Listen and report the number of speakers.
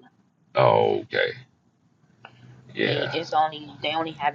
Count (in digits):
2